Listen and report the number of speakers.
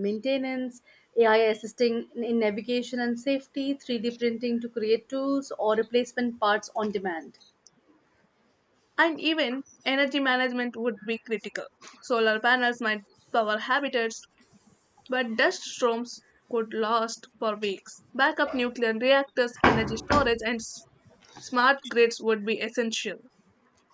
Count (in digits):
2